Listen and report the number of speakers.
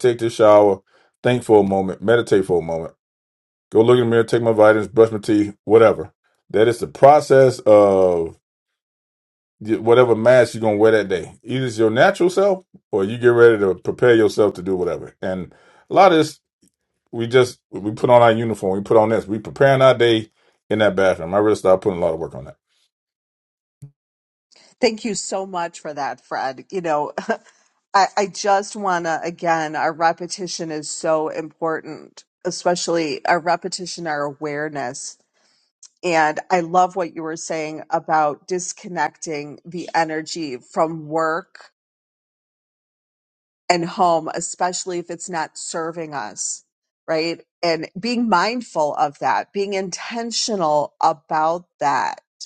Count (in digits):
2